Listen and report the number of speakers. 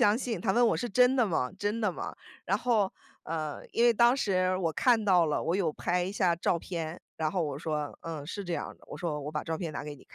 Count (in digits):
1